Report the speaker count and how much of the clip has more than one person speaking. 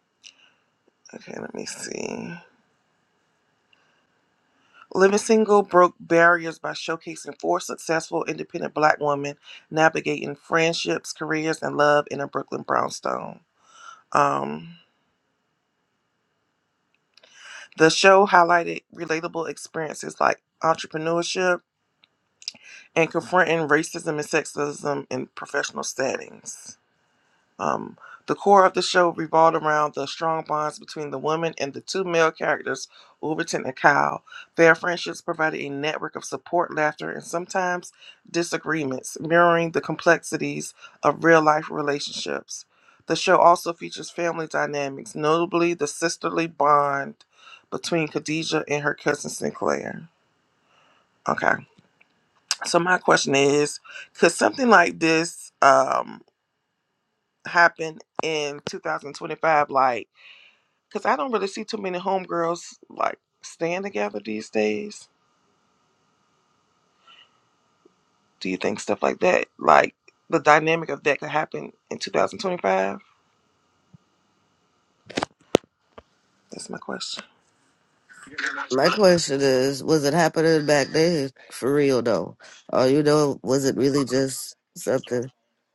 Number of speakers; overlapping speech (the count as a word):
two, no overlap